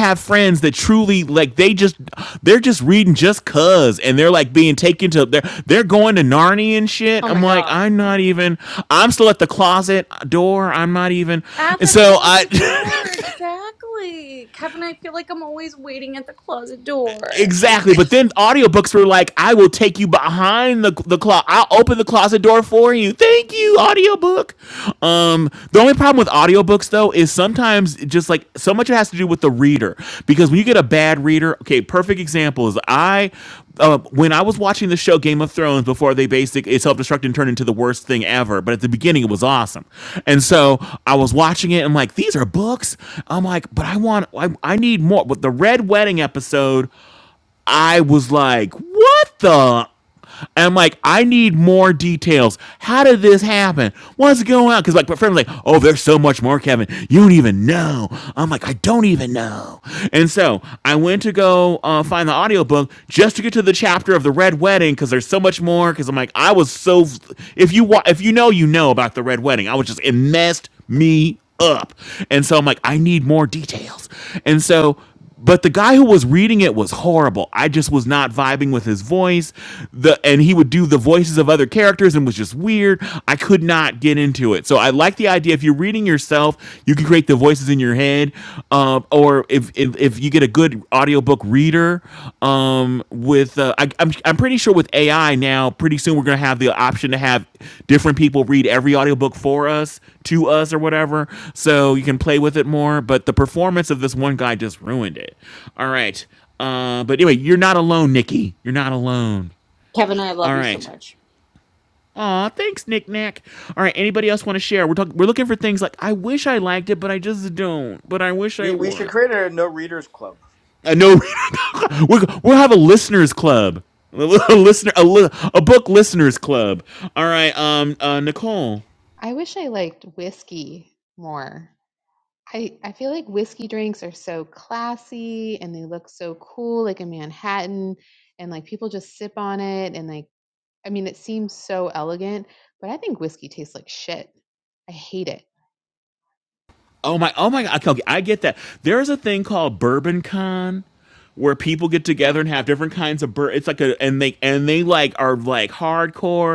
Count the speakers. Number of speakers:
four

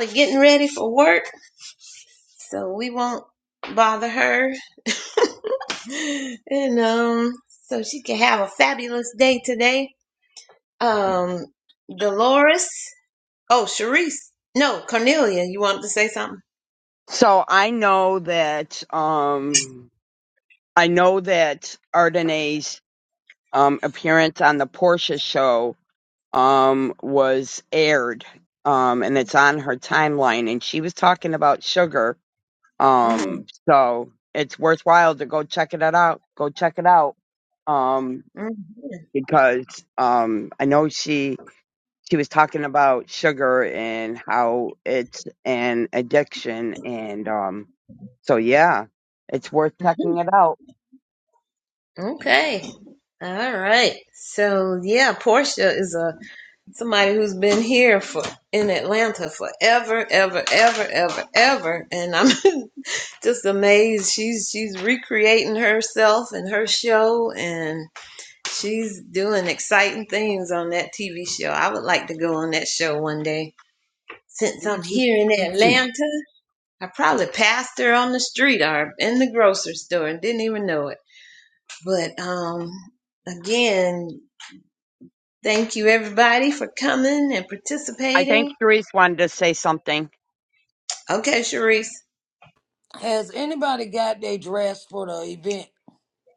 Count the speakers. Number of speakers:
three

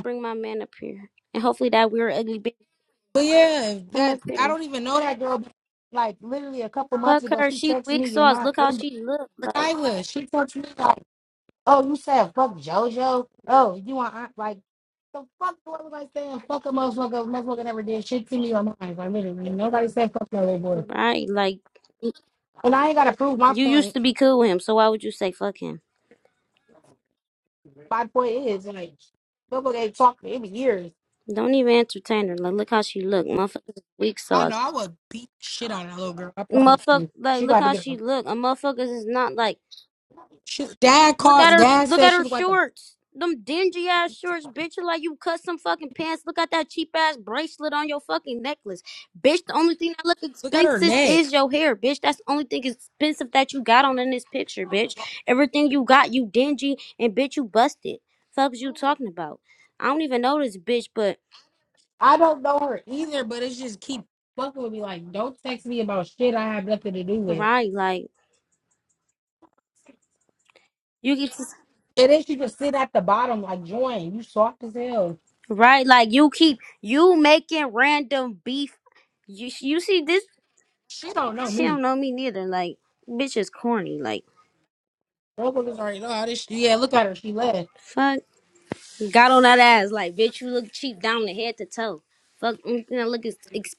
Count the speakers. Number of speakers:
two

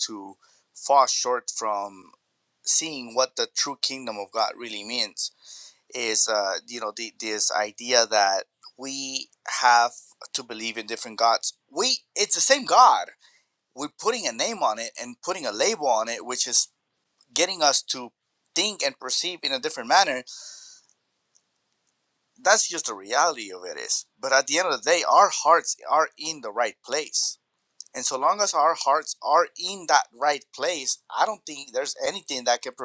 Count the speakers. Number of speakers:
one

